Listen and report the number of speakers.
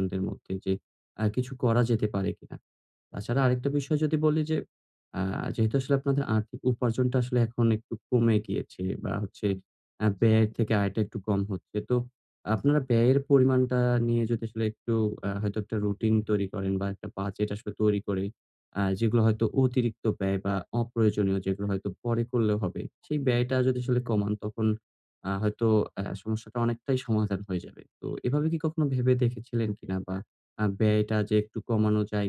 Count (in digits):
1